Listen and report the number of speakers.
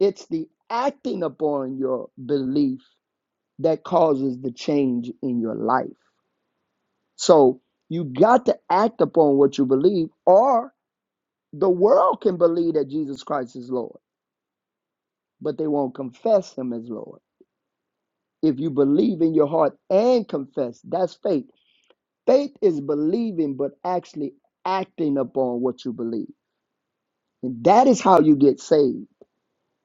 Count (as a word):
one